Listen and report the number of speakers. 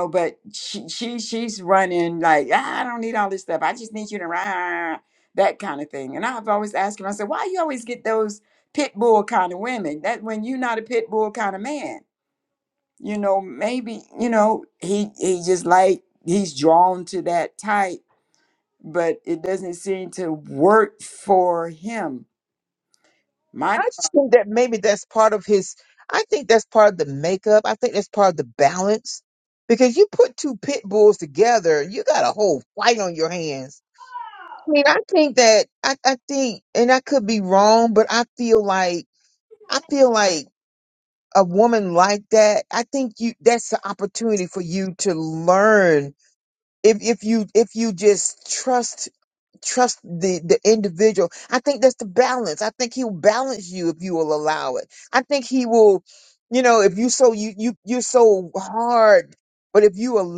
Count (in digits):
2